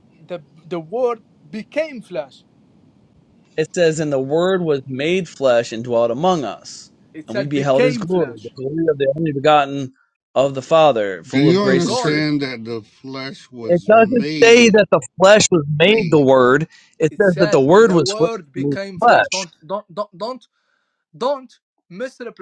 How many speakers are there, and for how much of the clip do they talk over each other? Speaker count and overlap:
3, about 26%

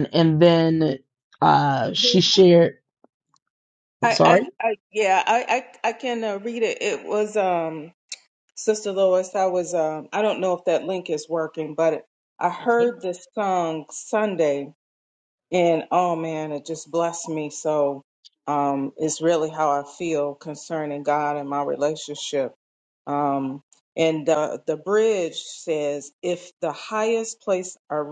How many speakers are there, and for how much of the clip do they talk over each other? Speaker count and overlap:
2, about 3%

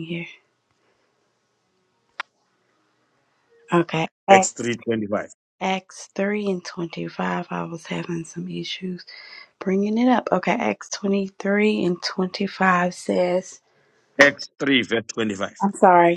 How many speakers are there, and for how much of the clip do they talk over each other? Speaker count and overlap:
2, about 1%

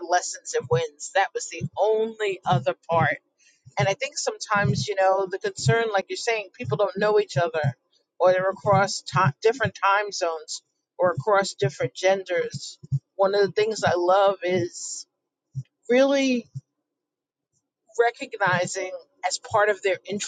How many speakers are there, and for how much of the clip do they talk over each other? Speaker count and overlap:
1, no overlap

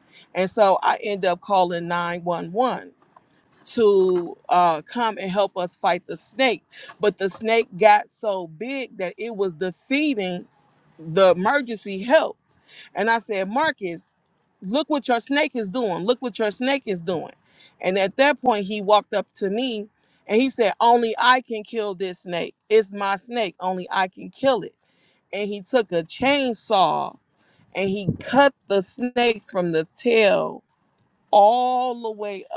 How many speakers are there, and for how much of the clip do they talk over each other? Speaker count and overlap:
1, no overlap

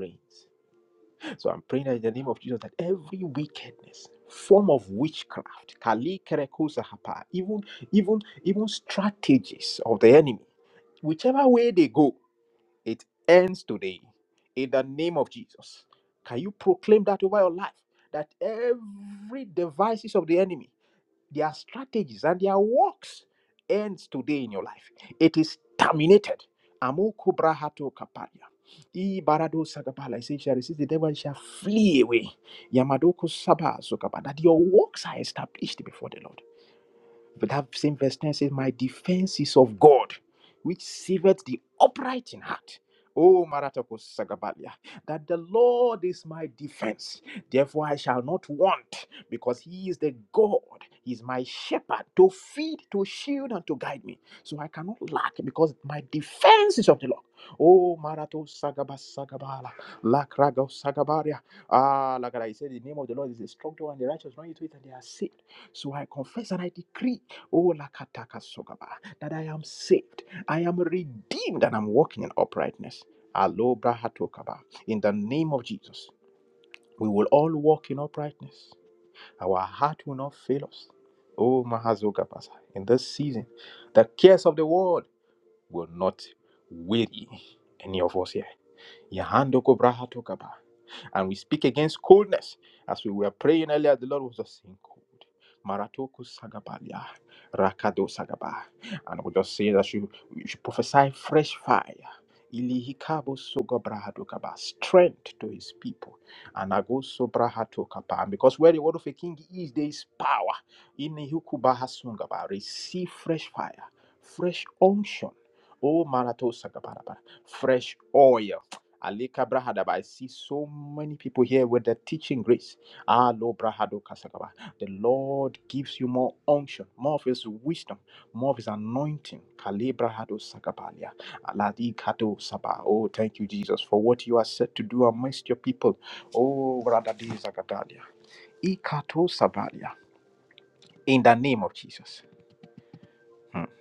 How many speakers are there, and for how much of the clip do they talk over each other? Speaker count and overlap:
1, no overlap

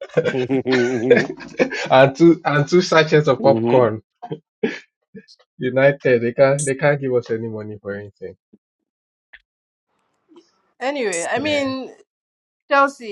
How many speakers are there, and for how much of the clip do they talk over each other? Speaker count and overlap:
3, about 6%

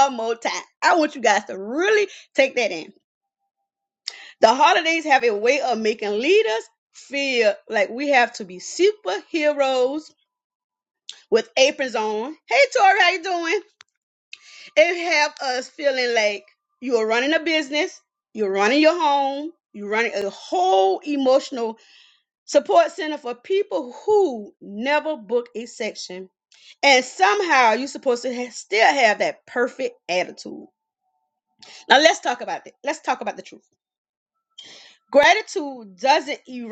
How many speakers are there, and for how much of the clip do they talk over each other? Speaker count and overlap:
1, no overlap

